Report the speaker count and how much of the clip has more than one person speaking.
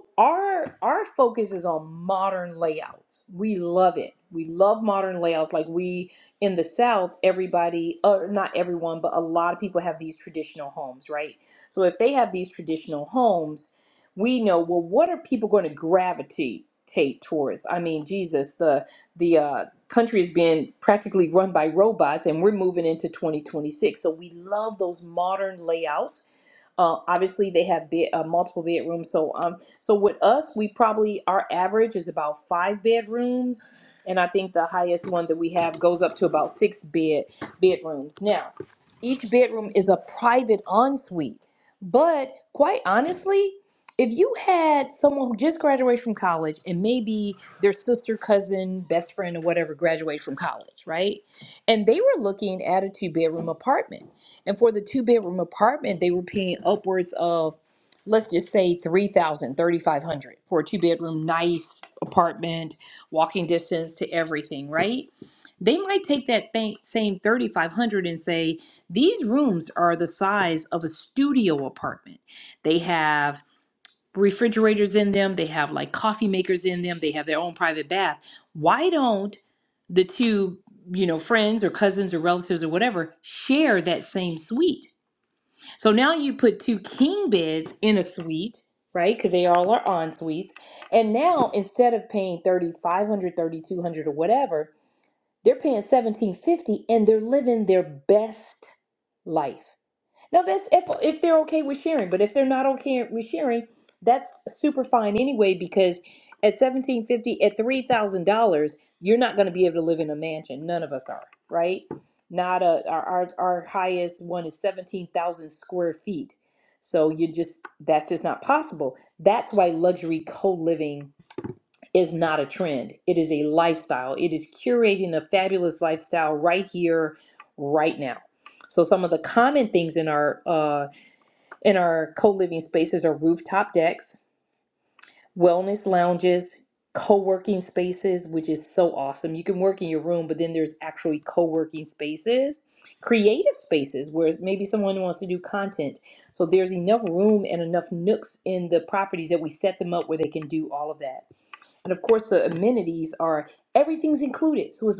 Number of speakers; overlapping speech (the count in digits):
1, no overlap